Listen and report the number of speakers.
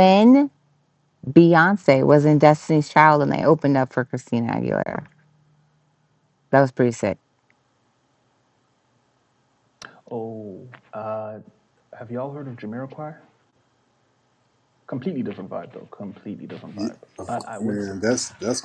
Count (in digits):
3